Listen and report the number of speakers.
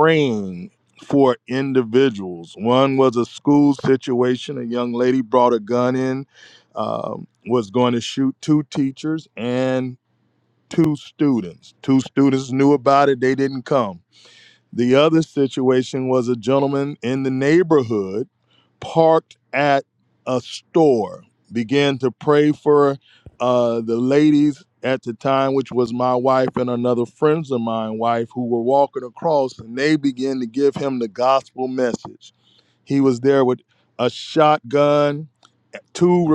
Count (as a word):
one